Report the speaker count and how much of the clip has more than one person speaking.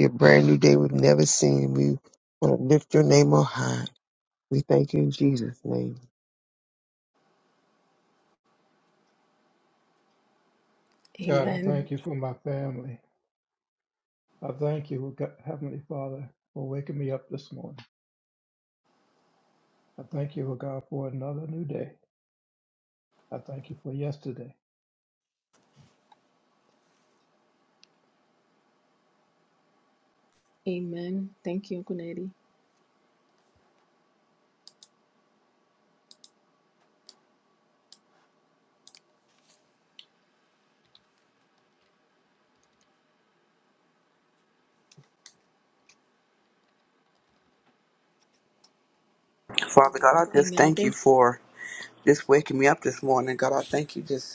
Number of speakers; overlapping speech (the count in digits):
4, about 3%